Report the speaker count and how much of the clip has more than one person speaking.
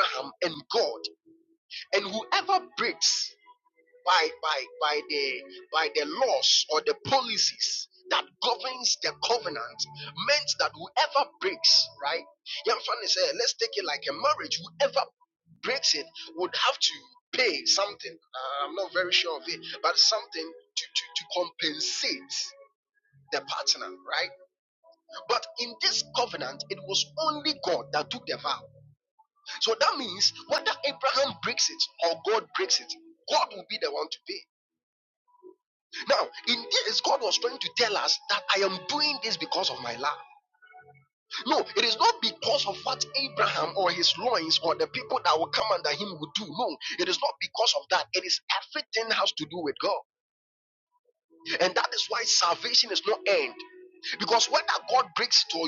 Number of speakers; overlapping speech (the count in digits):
1, no overlap